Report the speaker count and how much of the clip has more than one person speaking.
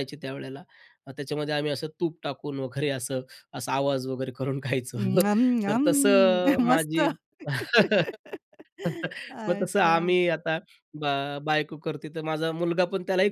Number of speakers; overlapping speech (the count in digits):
2, about 11%